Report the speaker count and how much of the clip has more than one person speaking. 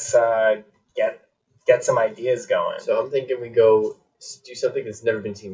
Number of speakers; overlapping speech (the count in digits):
2, no overlap